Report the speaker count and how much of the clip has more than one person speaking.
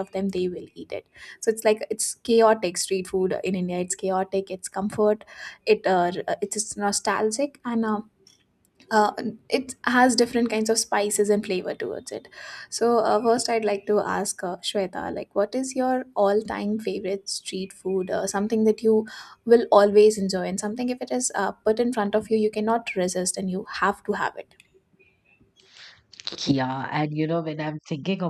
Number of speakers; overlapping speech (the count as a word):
two, no overlap